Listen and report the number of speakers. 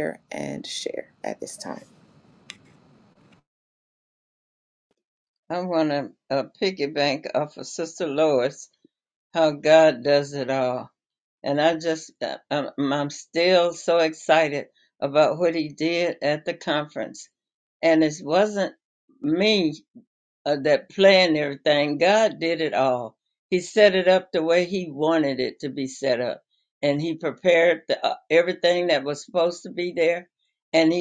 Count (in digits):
2